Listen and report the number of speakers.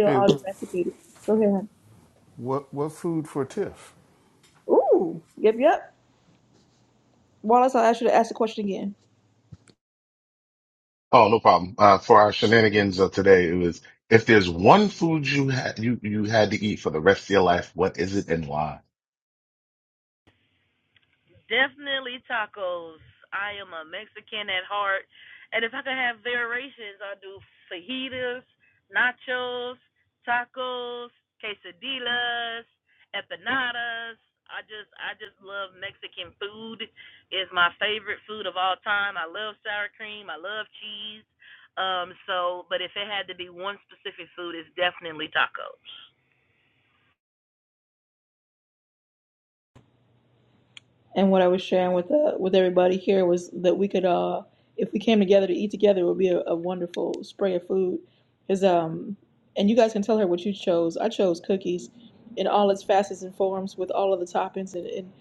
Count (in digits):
4